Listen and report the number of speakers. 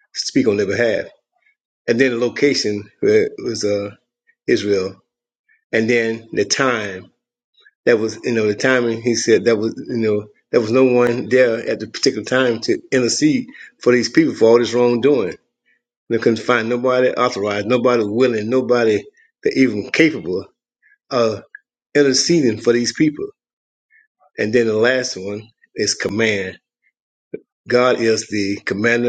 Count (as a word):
one